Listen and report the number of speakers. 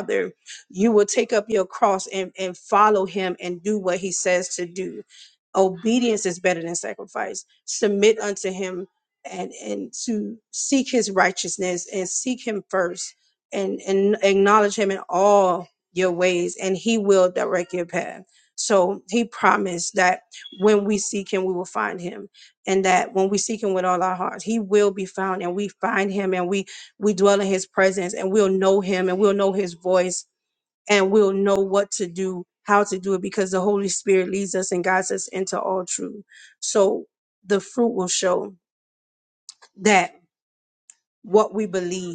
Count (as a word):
one